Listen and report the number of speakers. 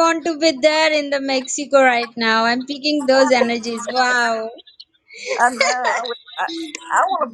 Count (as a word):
two